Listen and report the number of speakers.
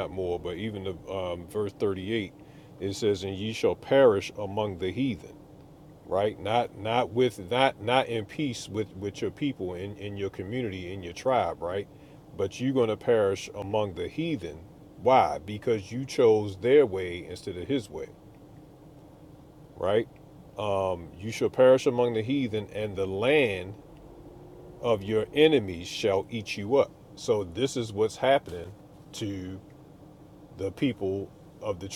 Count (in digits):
1